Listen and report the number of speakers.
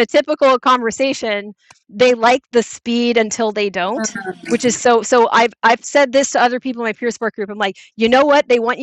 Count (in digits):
1